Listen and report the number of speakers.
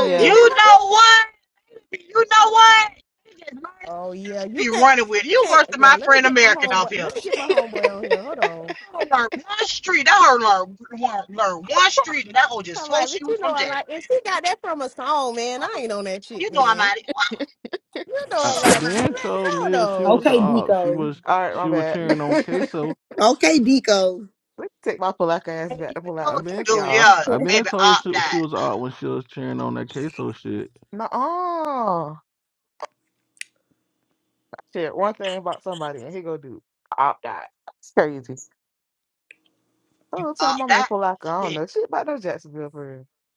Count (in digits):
5